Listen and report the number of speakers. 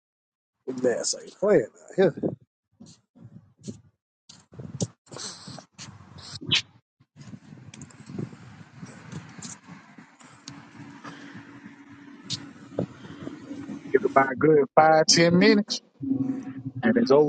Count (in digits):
2